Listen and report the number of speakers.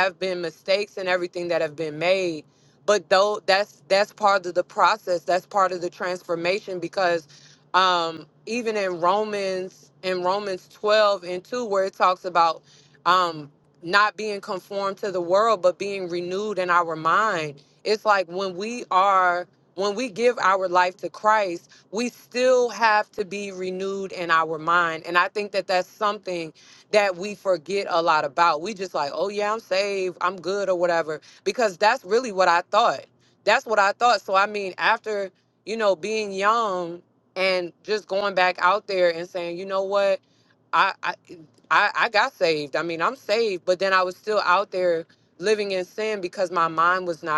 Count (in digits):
1